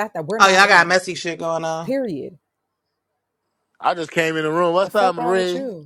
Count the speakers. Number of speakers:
3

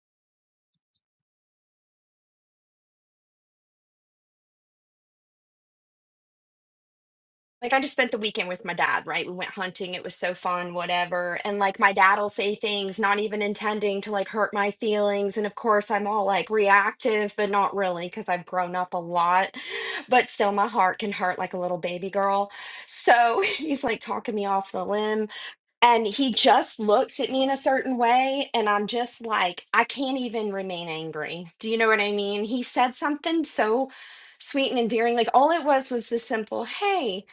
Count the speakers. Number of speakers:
1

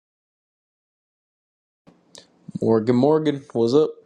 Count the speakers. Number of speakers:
1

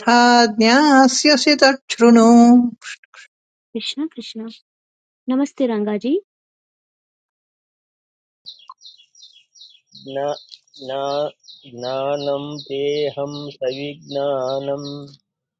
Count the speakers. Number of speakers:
3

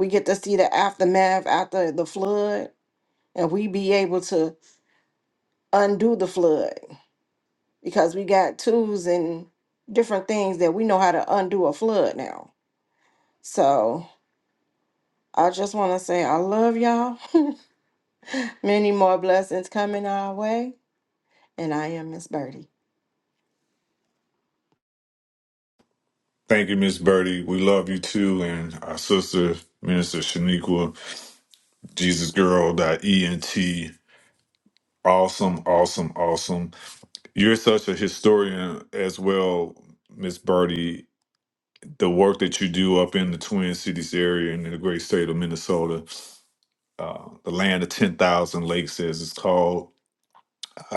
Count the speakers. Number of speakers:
2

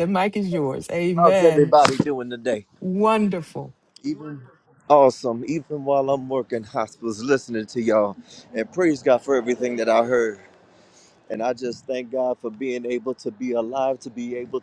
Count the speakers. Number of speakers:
2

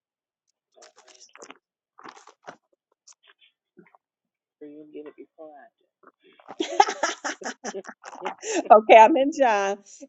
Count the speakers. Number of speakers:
2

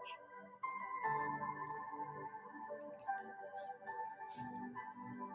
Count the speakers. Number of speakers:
0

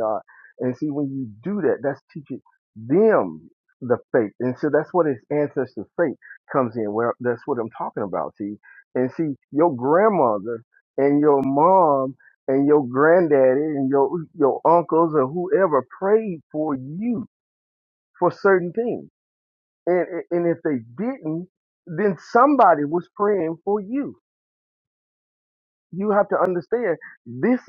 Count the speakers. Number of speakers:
1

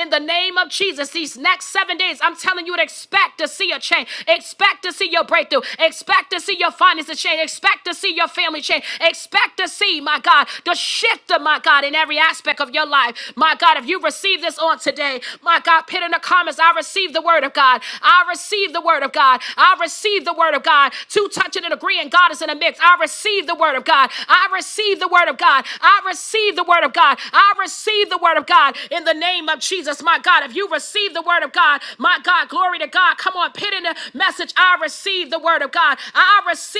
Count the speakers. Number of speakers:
1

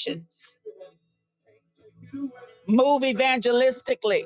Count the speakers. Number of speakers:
1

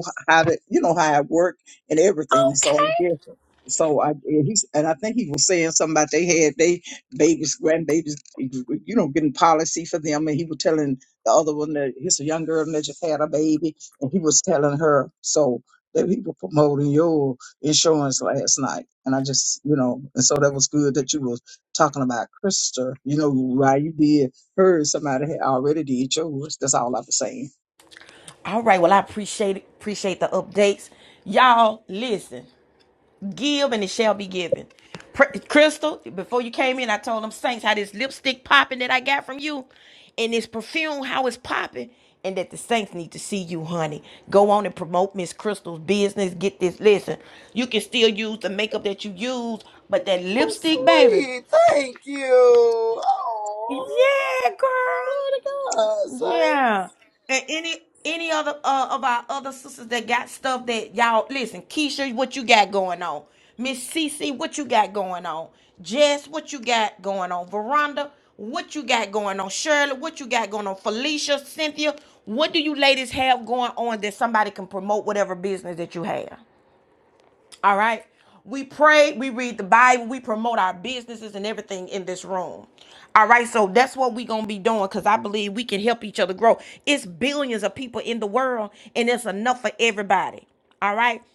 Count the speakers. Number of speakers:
3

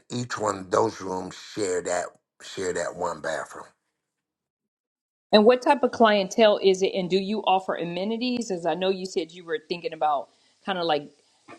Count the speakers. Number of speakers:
2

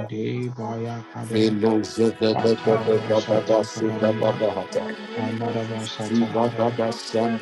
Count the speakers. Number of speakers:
3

